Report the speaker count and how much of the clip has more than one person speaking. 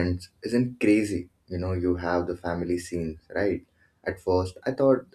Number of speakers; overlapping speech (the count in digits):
1, no overlap